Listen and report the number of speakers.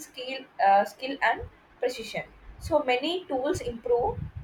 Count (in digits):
1